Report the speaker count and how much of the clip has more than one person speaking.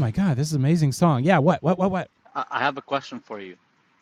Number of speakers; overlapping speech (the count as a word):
two, no overlap